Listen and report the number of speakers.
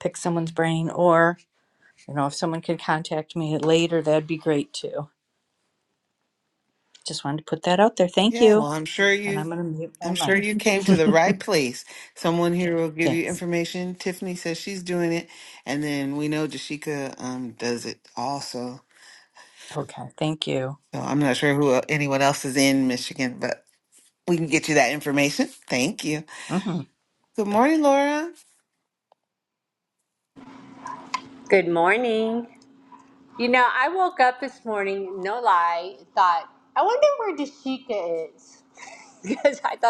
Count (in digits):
3